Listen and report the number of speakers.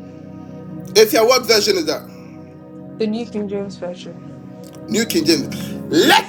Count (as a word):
two